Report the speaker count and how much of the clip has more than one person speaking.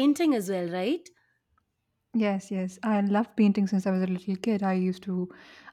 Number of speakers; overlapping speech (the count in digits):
2, no overlap